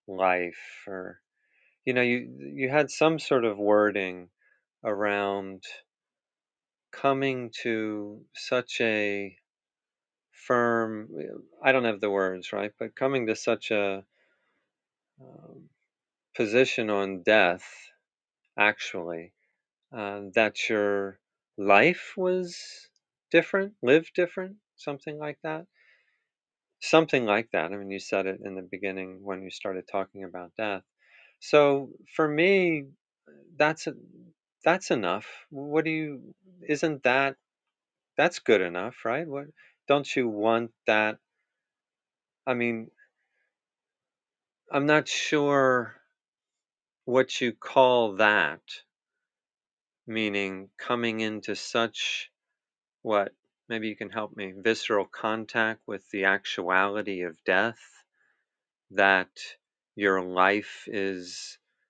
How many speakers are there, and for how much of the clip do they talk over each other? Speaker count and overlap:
one, no overlap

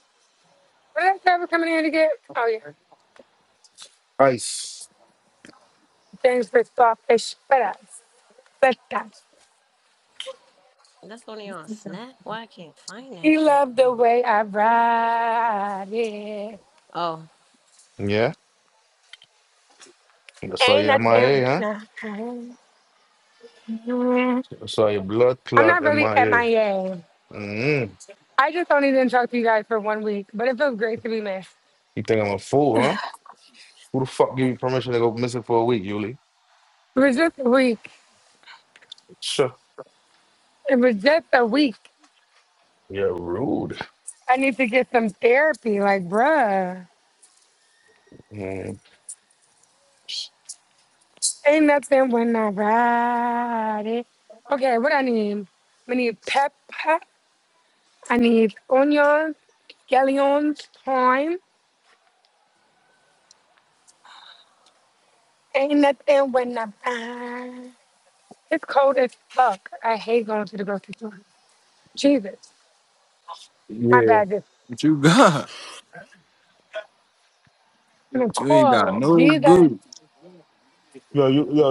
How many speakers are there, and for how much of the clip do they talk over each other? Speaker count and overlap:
four, about 5%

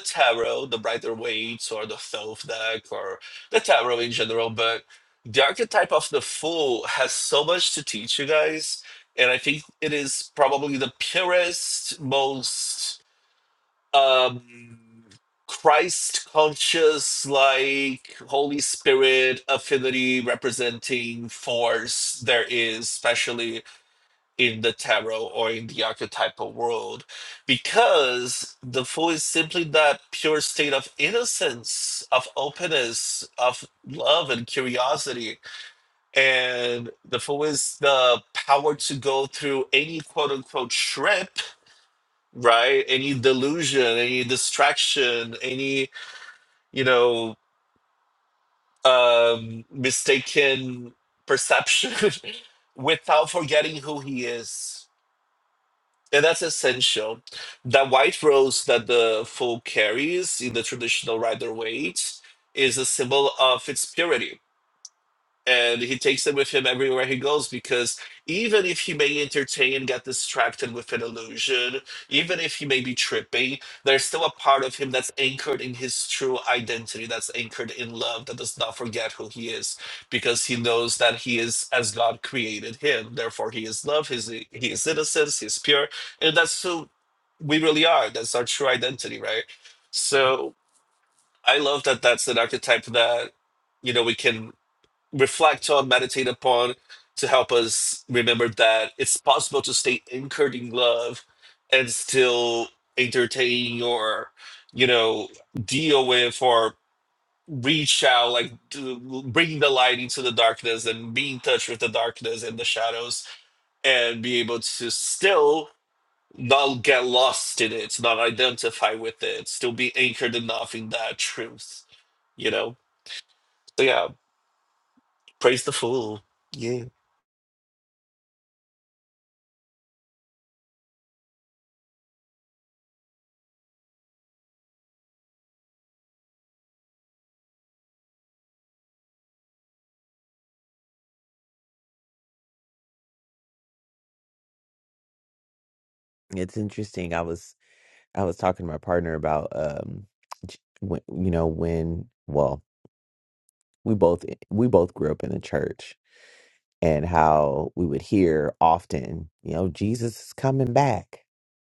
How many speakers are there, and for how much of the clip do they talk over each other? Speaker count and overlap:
two, no overlap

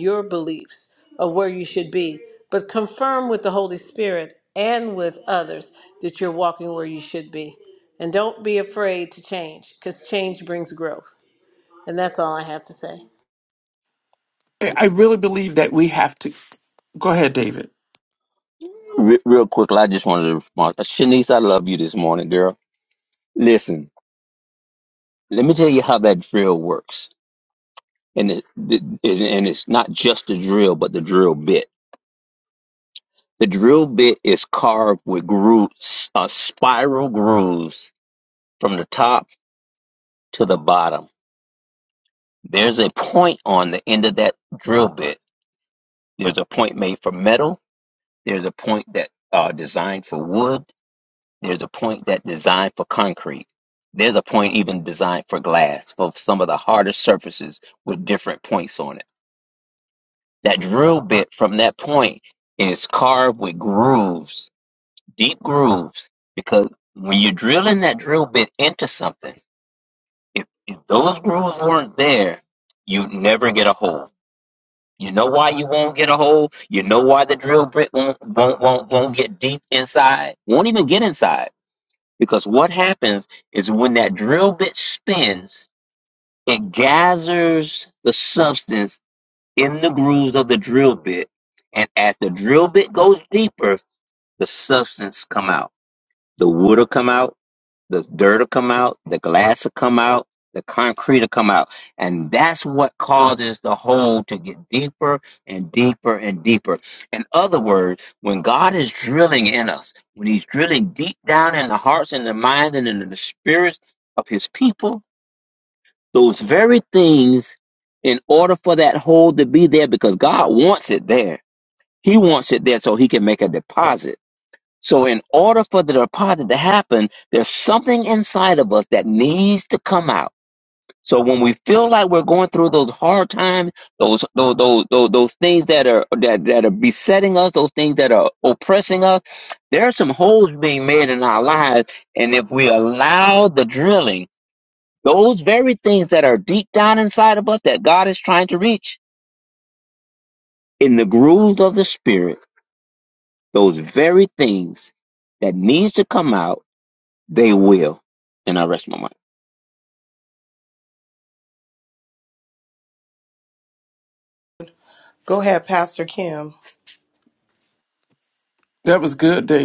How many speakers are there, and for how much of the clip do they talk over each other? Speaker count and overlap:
four, no overlap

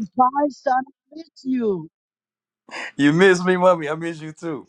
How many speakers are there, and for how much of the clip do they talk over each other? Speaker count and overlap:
two, no overlap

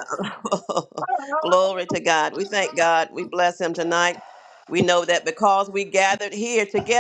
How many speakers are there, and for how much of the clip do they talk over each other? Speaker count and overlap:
one, no overlap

